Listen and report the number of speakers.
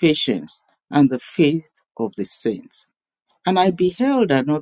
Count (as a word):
one